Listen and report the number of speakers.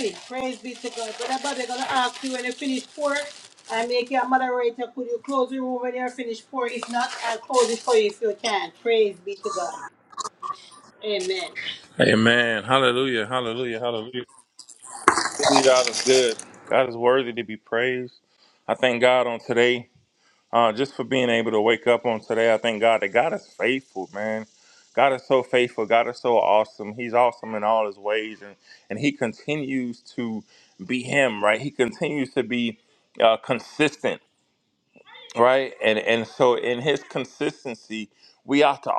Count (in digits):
2